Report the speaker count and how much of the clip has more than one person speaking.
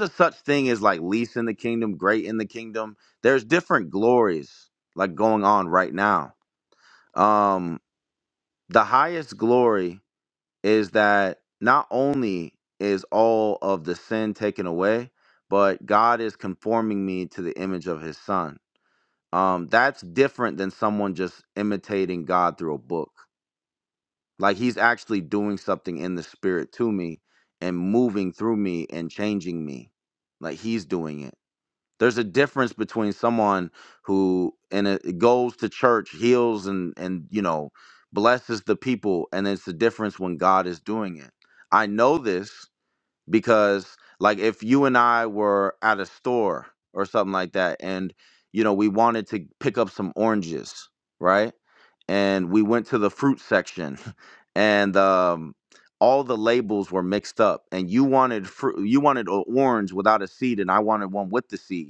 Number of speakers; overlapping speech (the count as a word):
one, no overlap